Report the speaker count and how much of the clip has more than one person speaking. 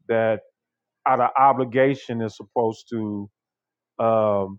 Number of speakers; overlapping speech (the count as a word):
one, no overlap